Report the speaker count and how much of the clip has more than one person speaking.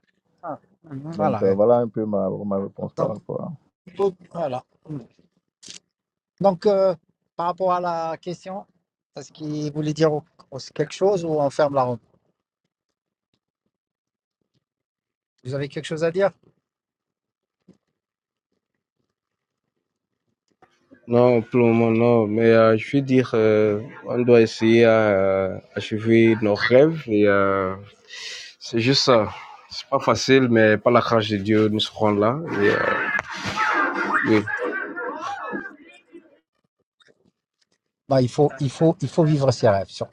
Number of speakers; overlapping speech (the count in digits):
3, about 1%